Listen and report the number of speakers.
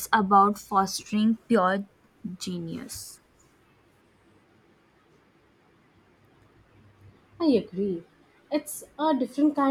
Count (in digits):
2